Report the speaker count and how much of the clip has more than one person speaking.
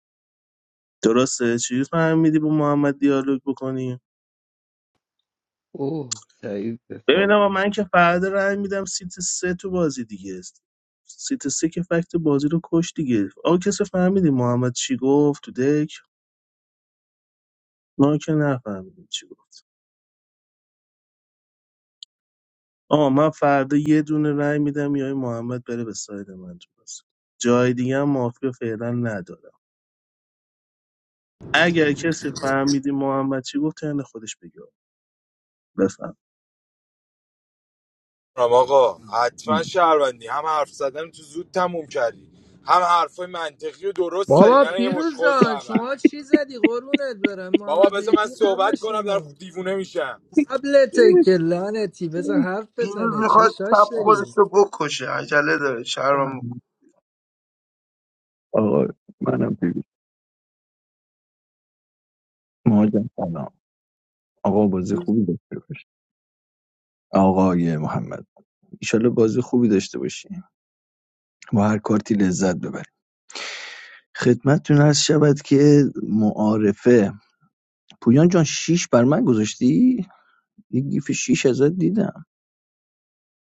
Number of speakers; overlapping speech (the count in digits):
6, about 6%